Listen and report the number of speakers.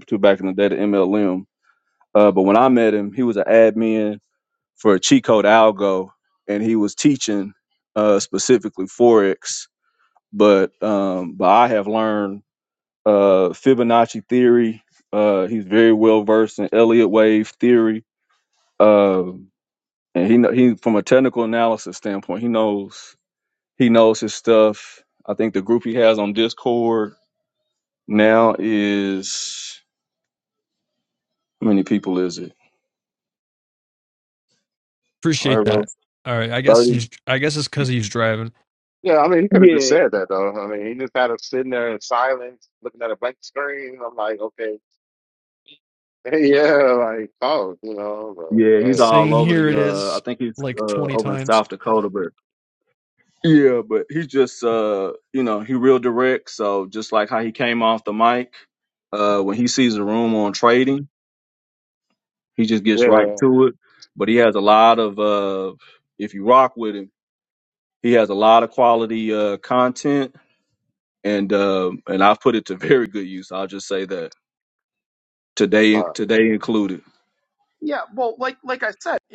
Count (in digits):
4